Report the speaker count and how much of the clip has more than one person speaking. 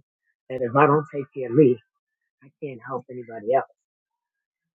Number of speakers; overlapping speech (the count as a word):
one, no overlap